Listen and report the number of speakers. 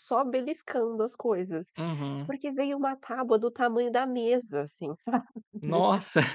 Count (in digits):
2